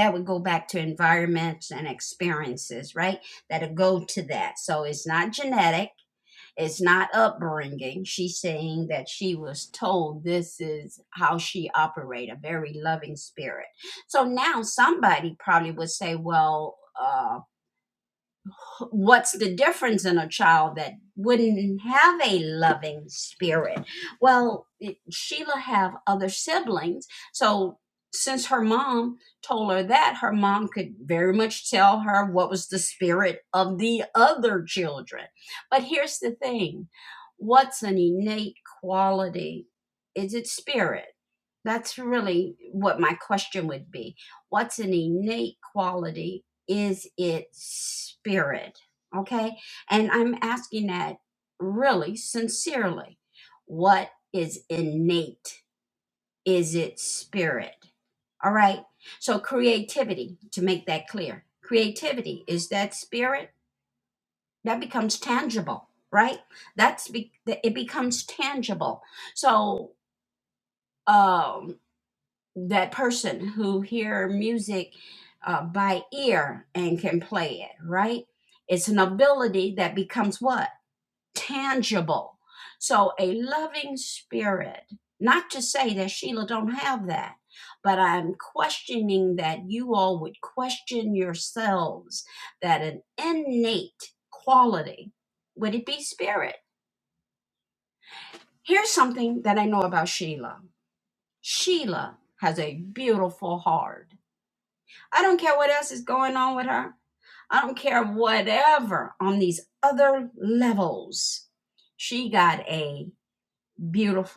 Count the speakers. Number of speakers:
one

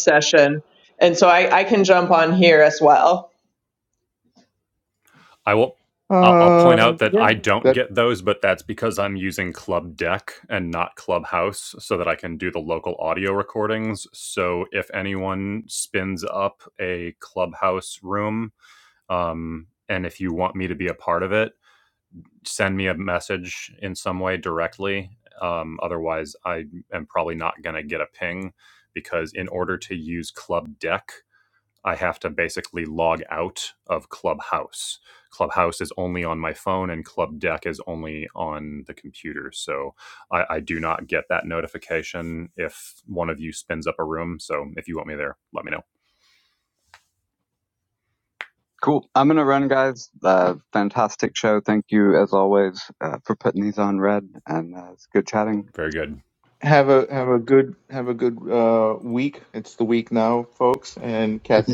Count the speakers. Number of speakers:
four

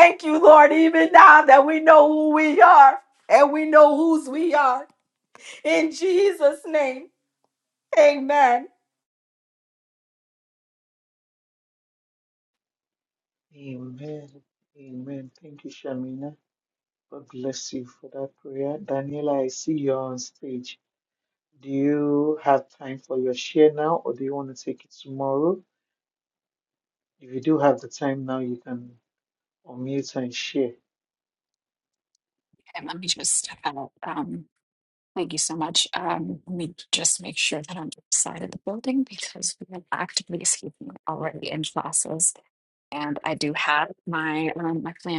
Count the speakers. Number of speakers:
three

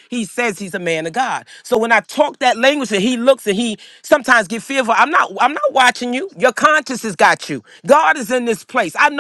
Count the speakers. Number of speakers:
one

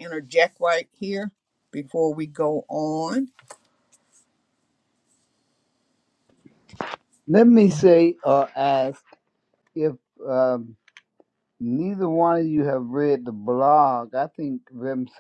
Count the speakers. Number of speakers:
two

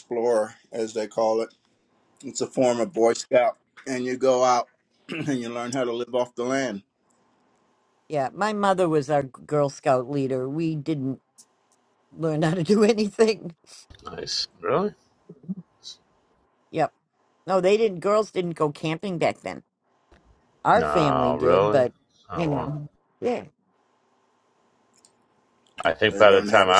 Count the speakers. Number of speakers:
three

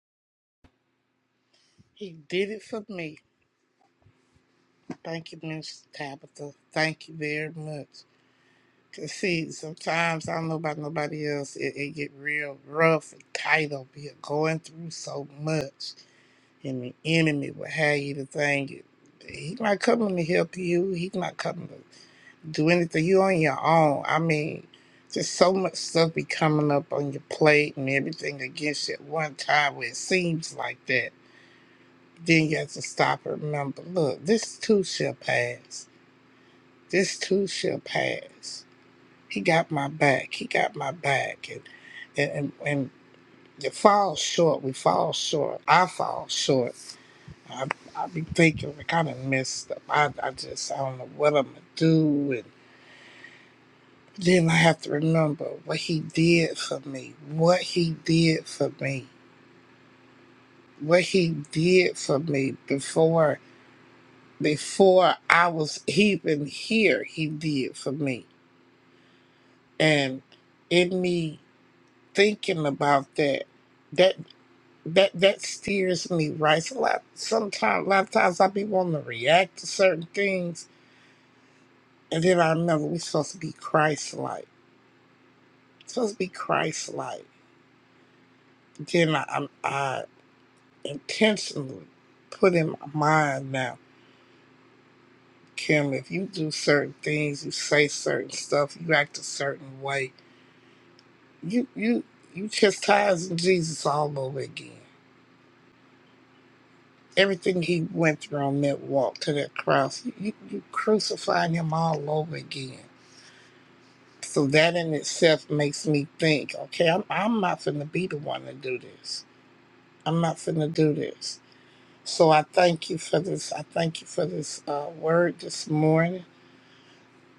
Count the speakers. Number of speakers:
one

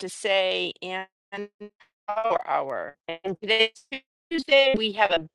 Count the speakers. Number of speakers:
one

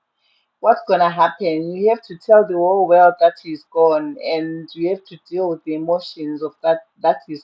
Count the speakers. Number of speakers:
one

